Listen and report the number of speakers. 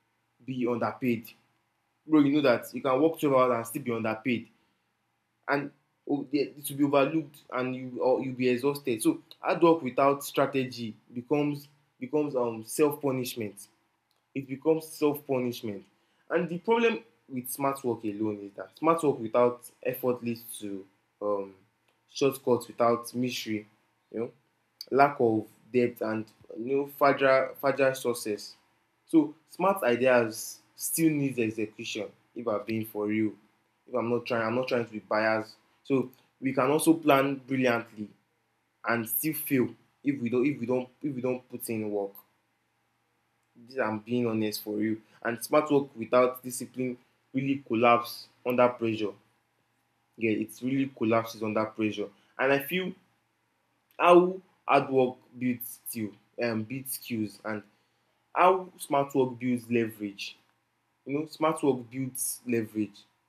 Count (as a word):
one